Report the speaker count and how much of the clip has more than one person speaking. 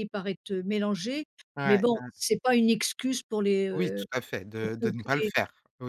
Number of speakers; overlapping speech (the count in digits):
2, about 25%